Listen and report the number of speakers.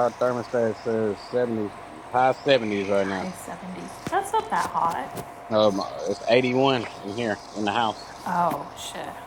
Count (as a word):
two